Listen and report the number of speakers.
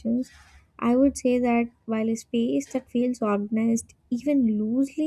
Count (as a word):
one